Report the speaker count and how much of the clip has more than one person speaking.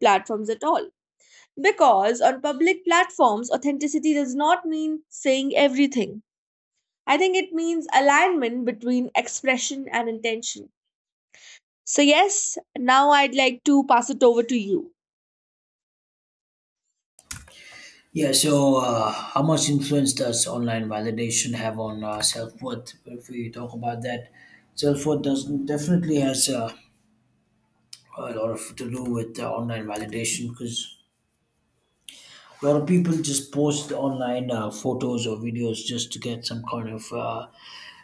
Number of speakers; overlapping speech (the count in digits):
2, no overlap